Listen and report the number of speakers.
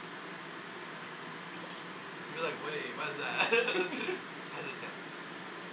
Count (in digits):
1